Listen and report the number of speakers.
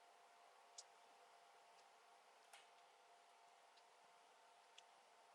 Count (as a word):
zero